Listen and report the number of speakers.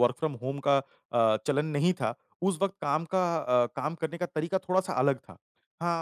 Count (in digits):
1